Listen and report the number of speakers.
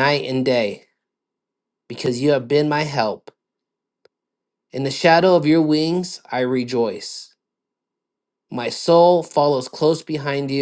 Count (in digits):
1